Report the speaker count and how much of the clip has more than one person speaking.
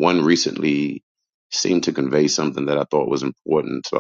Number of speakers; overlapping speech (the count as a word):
one, no overlap